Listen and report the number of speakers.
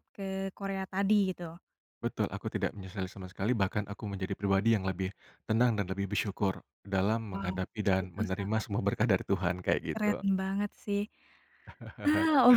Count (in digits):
2